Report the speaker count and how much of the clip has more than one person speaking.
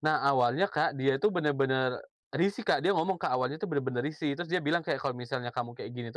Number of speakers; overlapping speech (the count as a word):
one, no overlap